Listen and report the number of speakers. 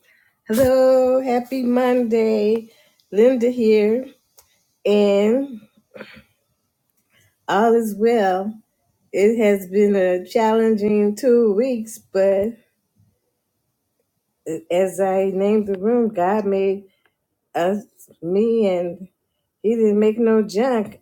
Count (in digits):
1